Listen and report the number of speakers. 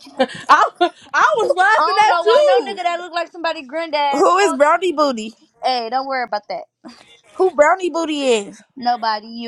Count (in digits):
3